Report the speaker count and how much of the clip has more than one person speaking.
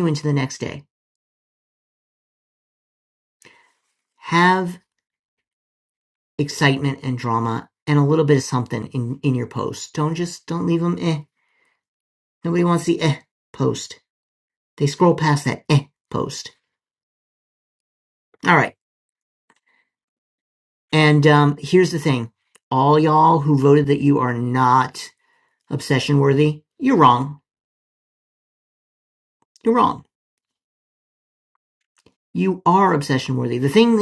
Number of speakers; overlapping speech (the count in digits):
1, no overlap